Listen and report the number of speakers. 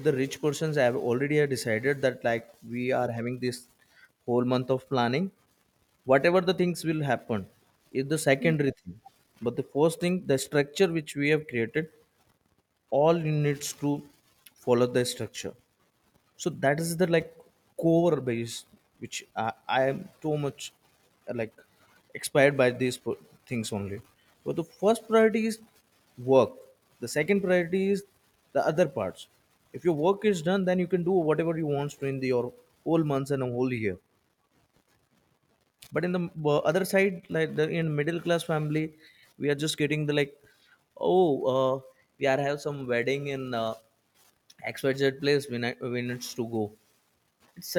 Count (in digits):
1